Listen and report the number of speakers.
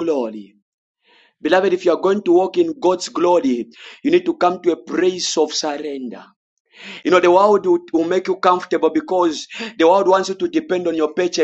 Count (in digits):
1